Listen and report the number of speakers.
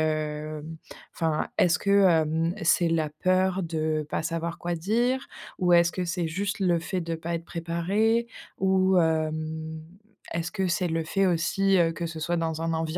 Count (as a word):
one